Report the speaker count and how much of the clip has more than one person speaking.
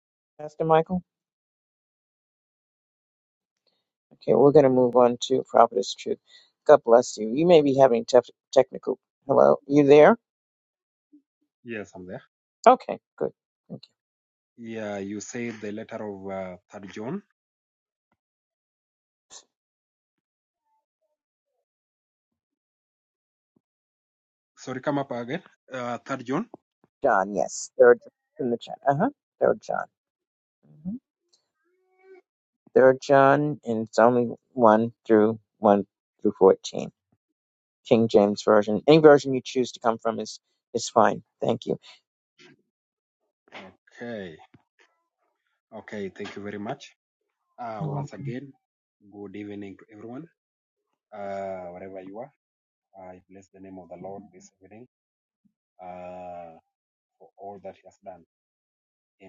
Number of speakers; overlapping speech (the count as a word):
two, under 1%